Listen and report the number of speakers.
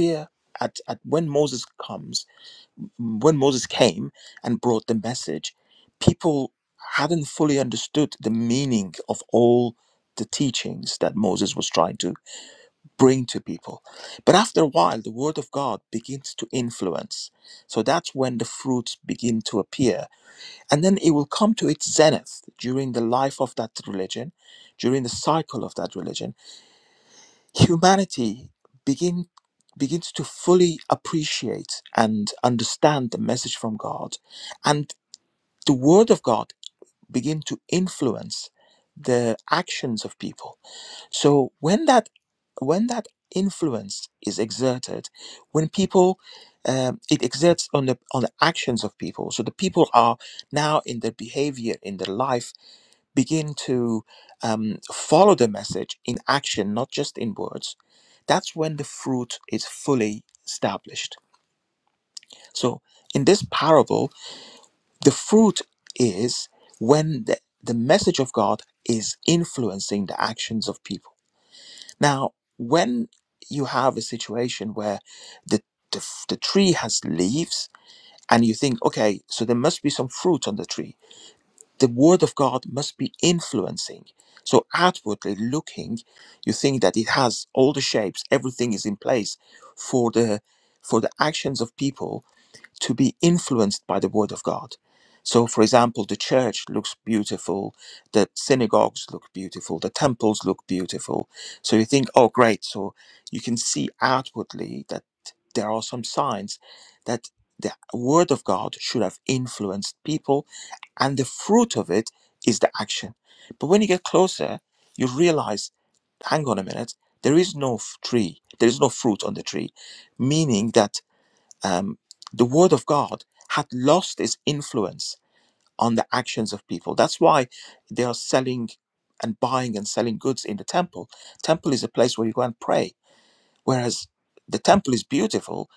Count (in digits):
1